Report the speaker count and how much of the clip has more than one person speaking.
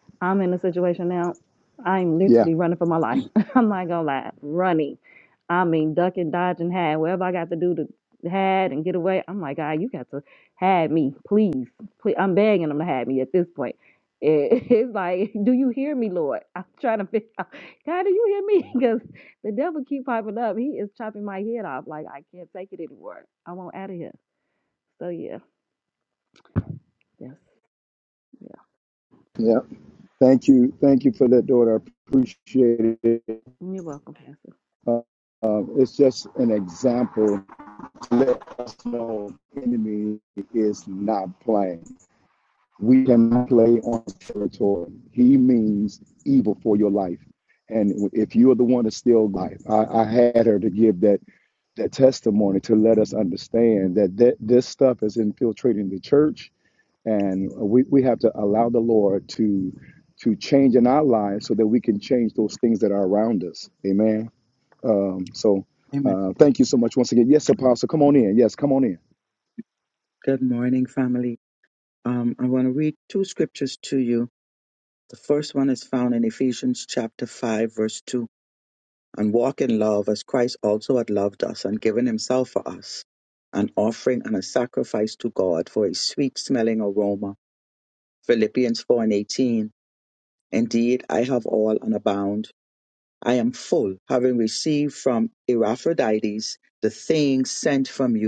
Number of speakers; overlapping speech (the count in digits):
3, under 1%